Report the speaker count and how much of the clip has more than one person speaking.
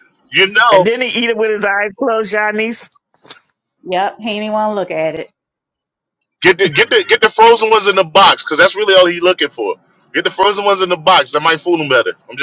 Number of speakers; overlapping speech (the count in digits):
3, about 1%